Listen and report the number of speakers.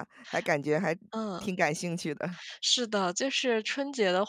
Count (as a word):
two